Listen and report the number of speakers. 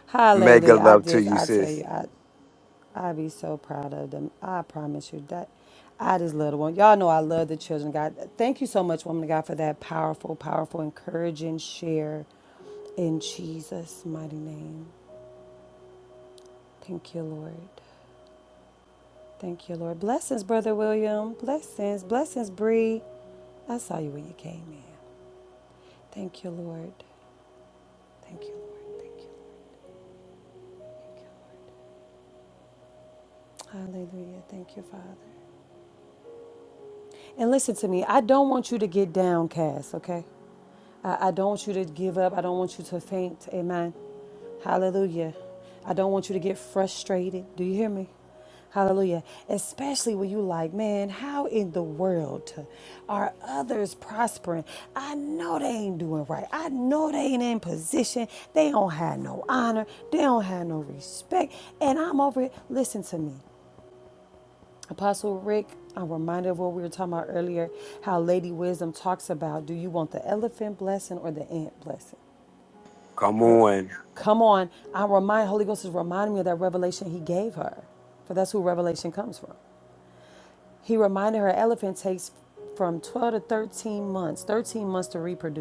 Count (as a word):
two